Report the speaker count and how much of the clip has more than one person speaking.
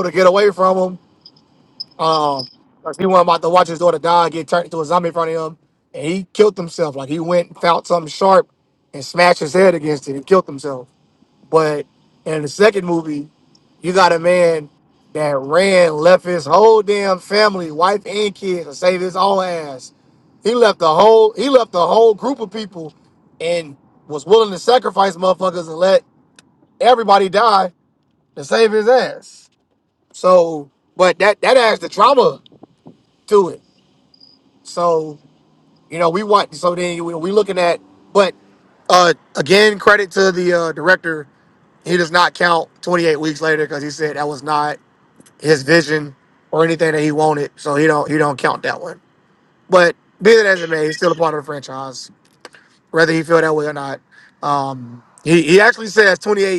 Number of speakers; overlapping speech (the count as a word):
one, no overlap